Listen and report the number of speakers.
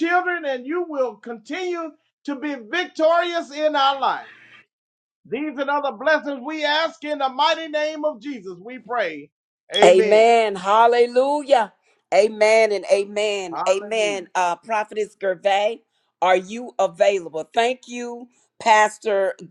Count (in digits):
2